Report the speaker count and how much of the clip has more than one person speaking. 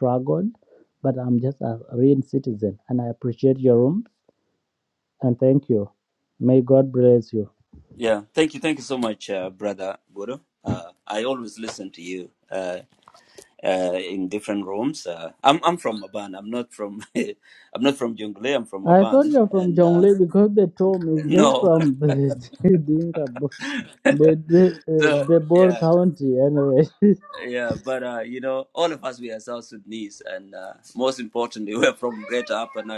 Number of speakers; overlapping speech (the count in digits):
2, about 8%